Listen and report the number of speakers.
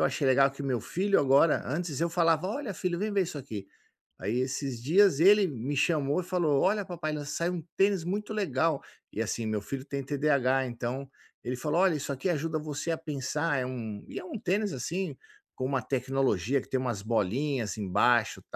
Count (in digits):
1